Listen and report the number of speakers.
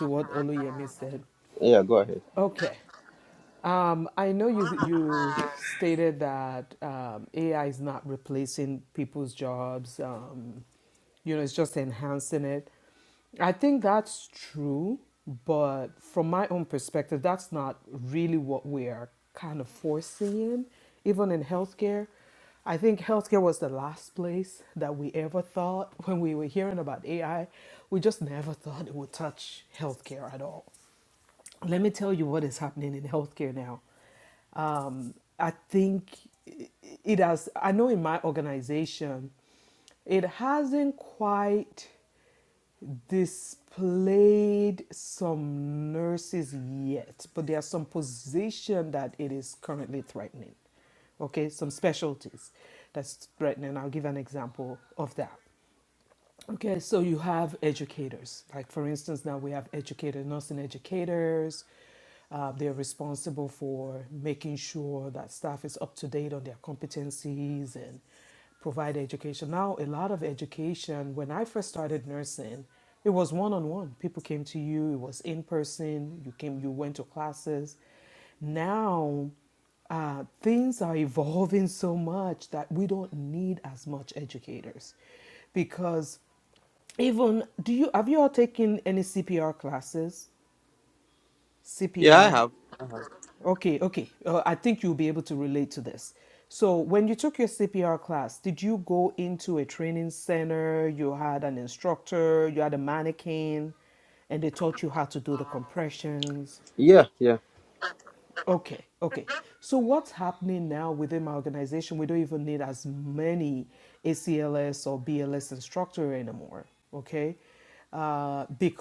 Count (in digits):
2